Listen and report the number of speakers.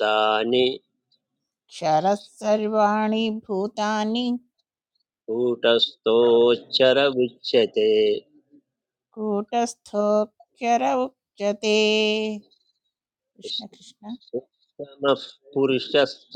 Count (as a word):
two